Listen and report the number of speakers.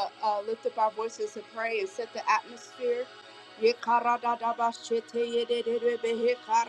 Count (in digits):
1